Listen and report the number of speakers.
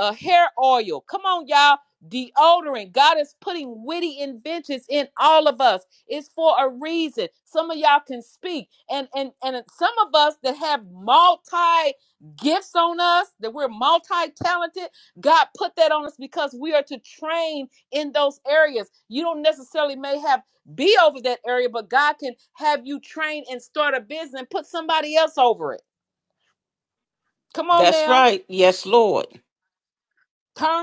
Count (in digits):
2